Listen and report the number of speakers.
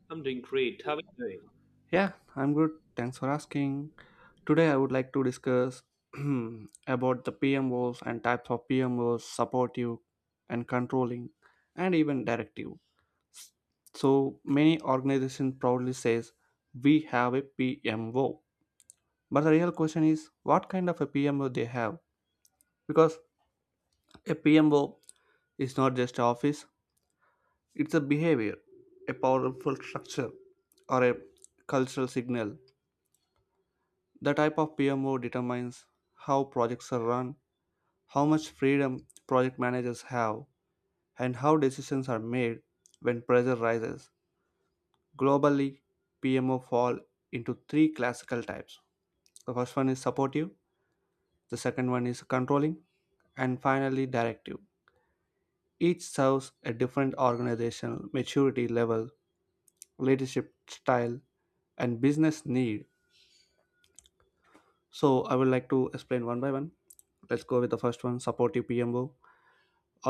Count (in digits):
2